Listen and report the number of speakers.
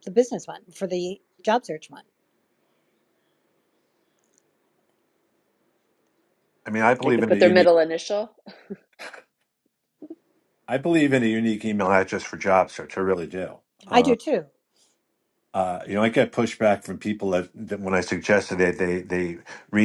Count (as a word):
three